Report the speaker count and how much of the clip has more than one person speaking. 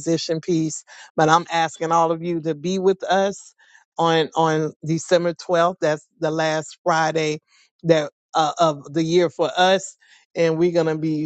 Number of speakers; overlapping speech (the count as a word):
one, no overlap